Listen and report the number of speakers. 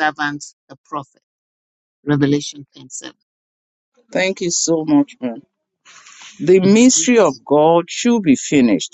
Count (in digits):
2